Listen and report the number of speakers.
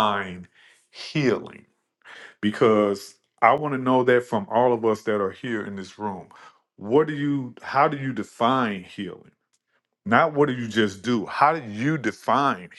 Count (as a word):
one